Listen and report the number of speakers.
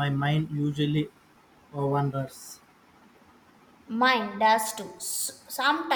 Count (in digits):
2